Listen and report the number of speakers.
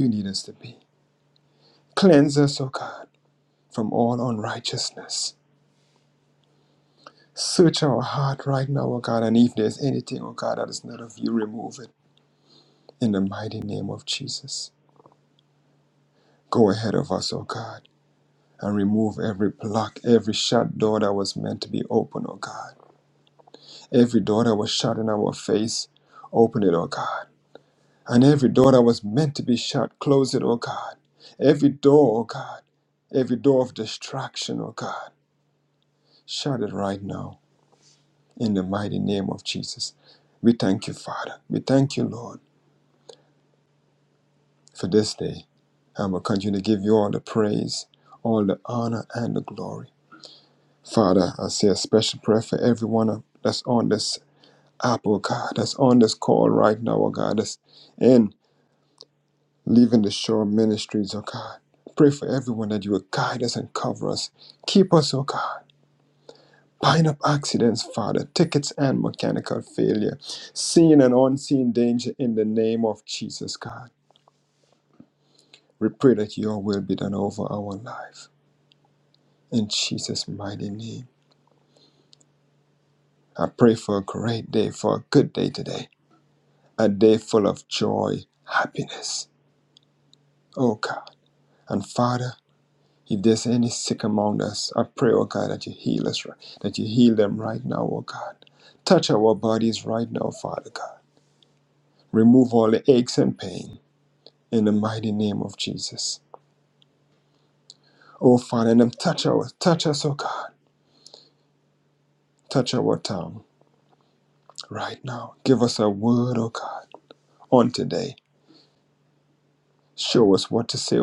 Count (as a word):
one